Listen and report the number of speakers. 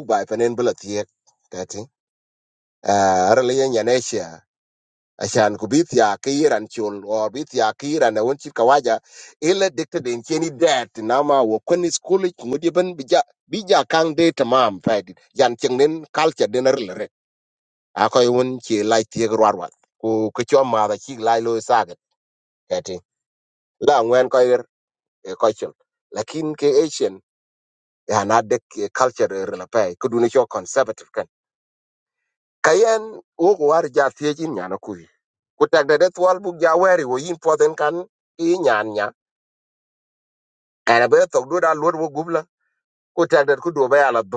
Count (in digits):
1